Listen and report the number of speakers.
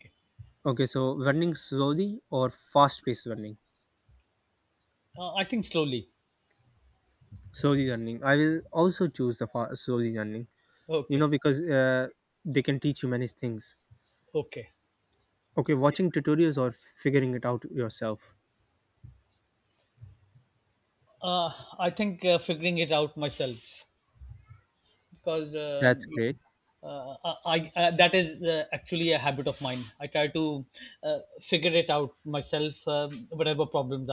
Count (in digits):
2